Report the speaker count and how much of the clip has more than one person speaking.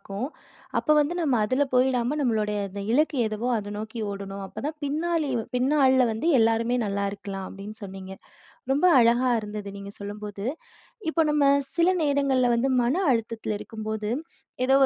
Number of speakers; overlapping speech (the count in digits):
1, no overlap